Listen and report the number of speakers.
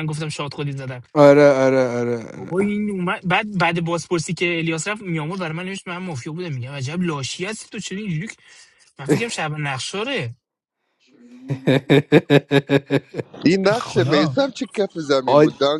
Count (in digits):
3